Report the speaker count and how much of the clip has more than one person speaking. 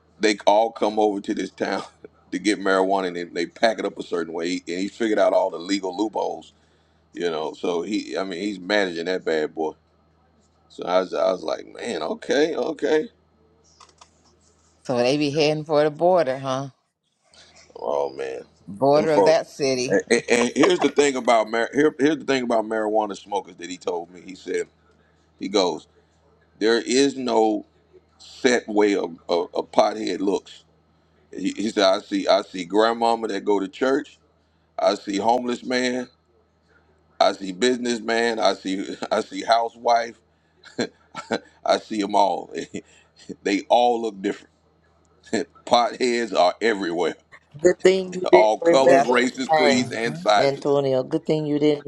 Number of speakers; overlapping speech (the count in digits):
3, about 5%